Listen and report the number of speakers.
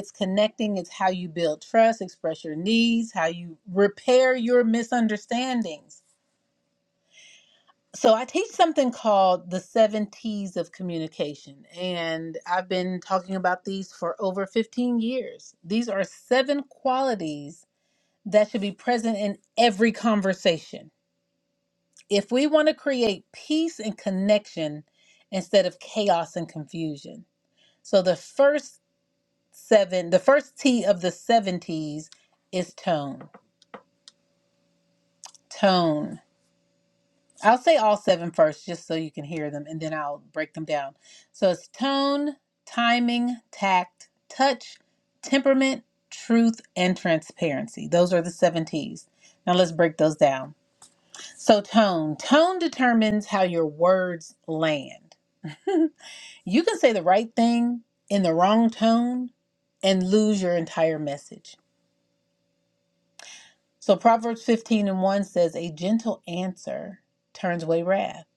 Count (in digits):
1